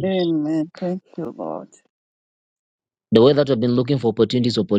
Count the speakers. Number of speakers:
2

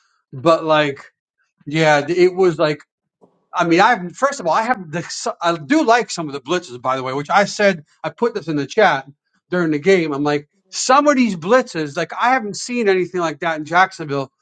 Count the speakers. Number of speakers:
1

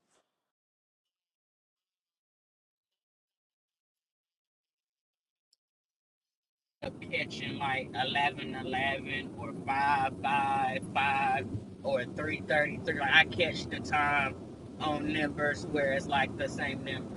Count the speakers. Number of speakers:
1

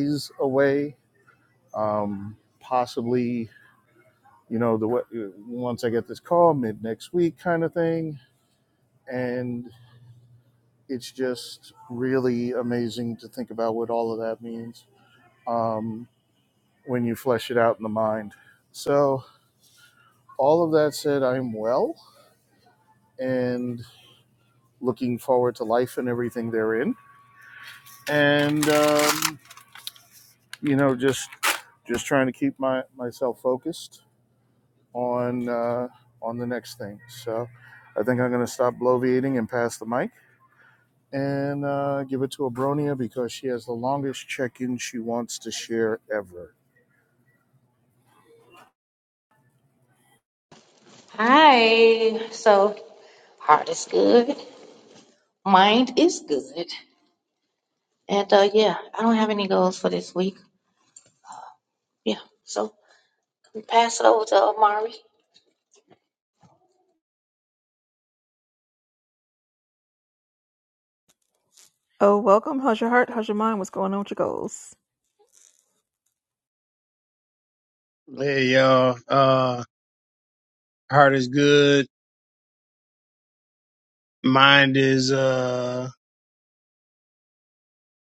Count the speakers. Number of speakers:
4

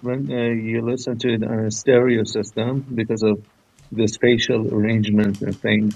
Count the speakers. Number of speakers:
1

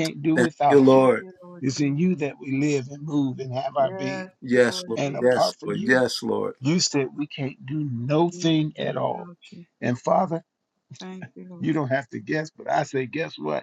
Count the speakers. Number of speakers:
3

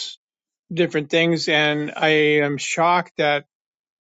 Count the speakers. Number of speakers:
1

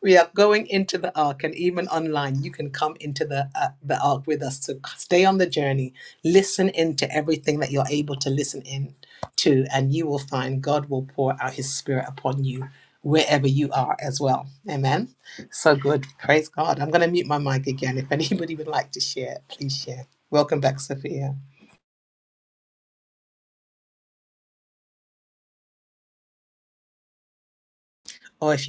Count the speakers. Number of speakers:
1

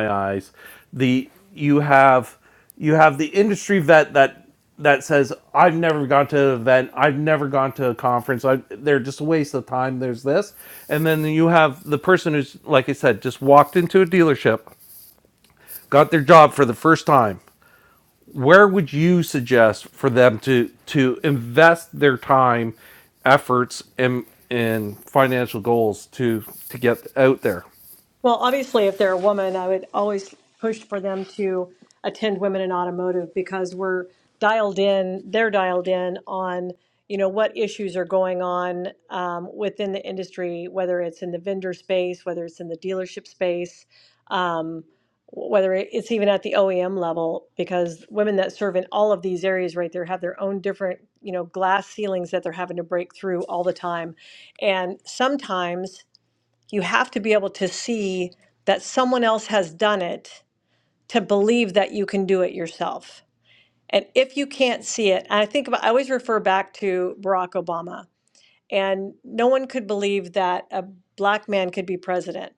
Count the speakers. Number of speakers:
2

